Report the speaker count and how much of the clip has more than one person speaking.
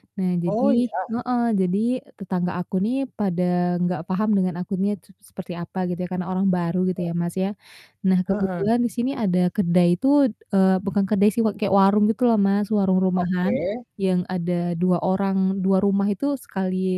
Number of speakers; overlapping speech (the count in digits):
2, about 7%